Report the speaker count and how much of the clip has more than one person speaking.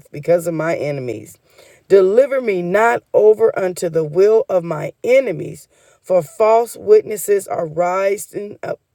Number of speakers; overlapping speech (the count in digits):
1, no overlap